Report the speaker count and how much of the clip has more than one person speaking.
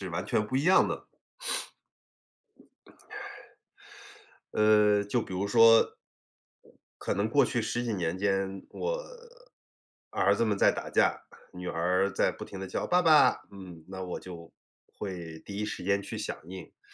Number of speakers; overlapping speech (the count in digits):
1, no overlap